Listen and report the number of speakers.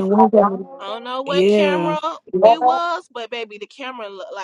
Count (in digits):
2